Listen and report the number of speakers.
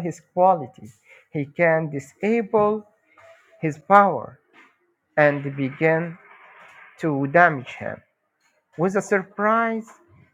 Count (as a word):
one